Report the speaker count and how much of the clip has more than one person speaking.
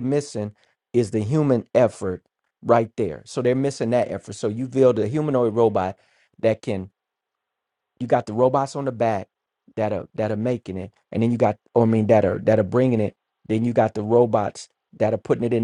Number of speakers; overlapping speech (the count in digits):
1, no overlap